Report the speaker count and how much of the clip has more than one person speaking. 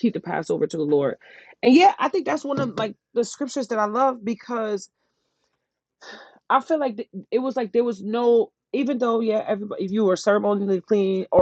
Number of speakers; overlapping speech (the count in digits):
1, no overlap